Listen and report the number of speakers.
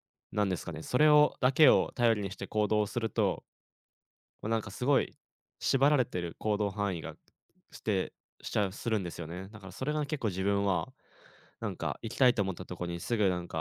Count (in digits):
1